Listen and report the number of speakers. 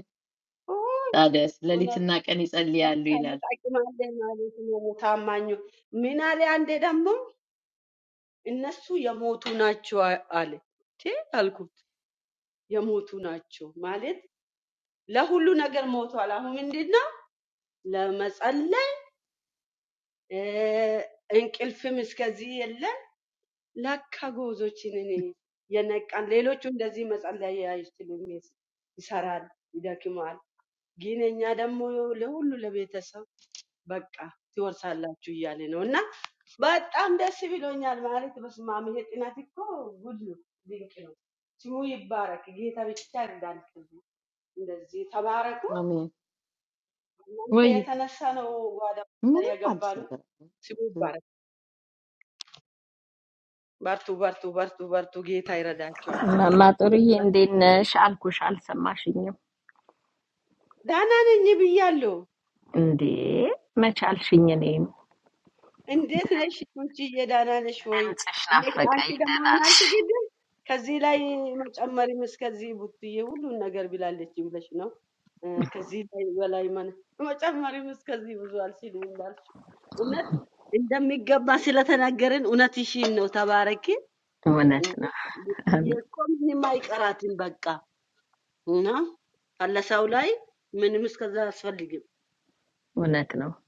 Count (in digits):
3